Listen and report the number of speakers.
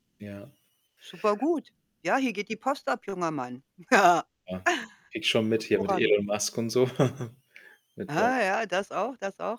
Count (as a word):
two